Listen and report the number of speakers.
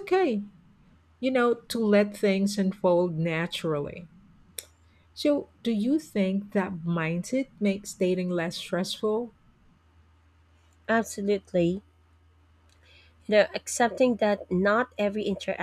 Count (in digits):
2